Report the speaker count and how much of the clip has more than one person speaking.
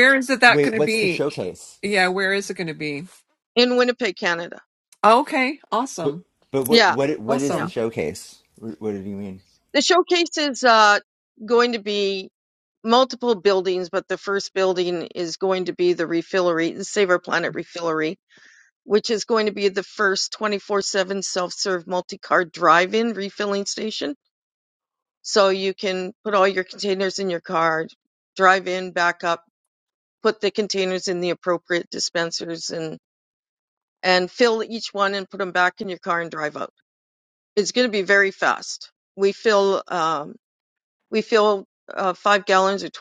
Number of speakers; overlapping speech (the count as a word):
three, about 3%